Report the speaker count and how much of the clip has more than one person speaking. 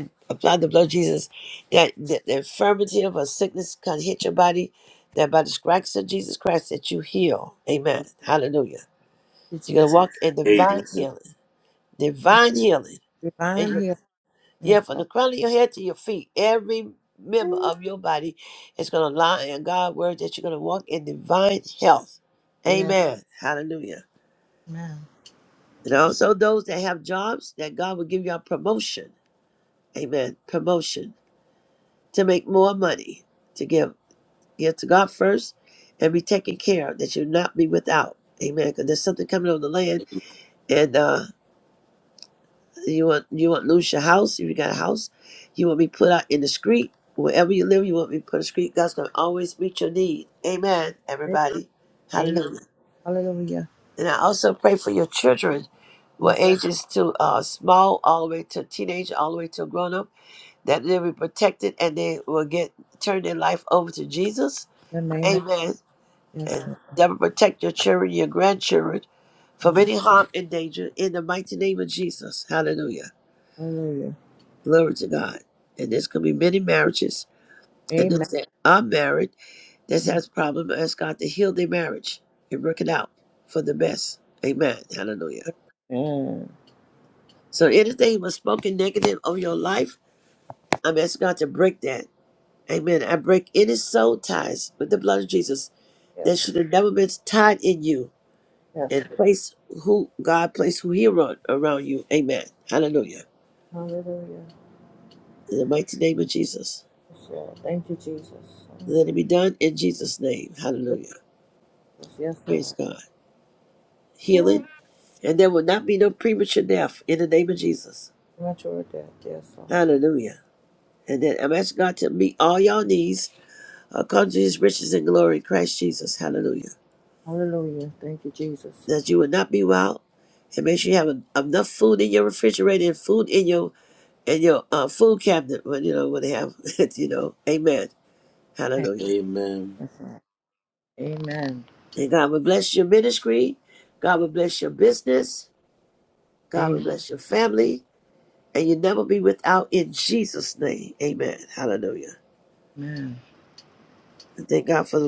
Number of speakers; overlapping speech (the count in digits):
3, about 3%